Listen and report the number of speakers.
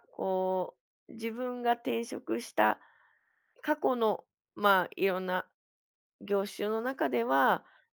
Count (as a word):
one